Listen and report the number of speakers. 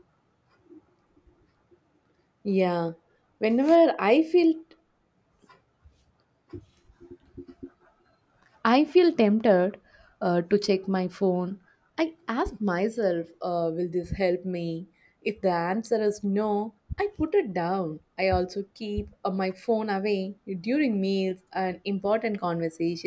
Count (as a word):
one